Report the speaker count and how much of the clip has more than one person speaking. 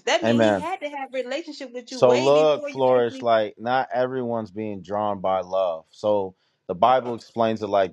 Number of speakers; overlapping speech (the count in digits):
2, about 21%